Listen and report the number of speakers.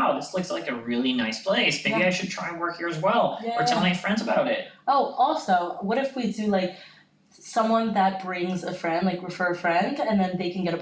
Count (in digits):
2